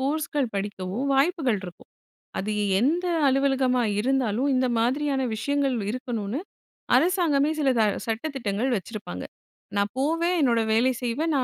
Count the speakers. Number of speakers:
1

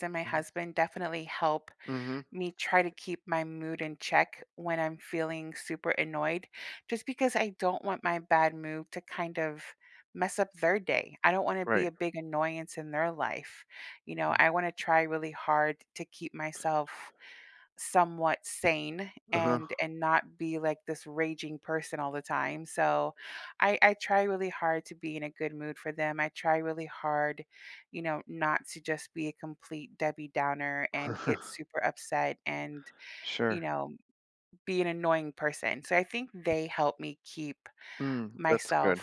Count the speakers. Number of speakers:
2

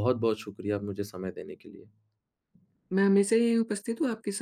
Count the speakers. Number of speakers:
2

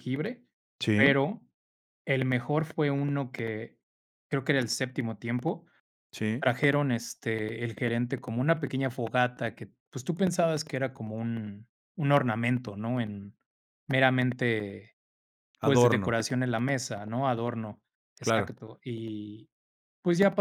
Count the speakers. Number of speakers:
2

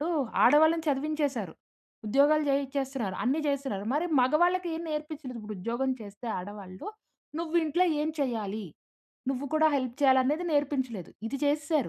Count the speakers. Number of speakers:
1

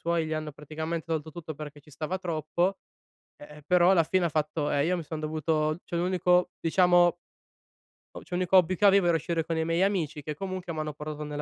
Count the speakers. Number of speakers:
1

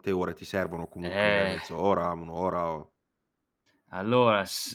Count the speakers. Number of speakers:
2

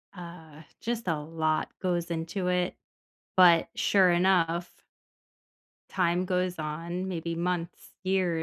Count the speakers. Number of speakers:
1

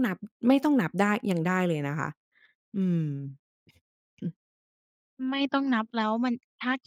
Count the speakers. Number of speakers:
2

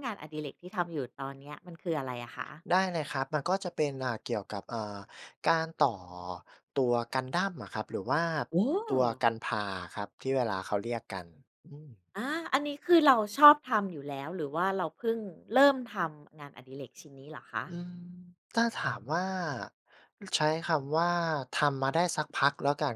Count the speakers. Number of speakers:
2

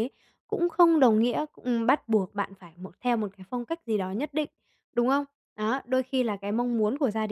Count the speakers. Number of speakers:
1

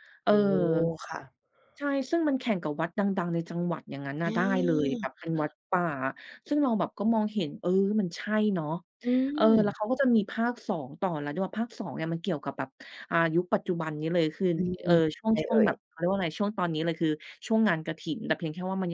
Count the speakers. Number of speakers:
2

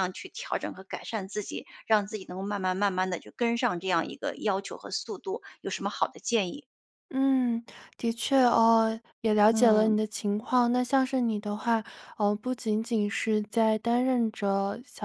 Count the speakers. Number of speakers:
2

